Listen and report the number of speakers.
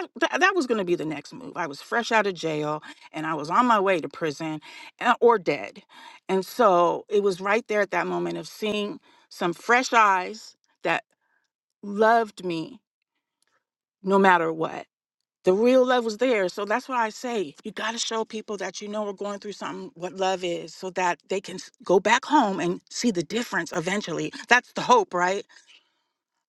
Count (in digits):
1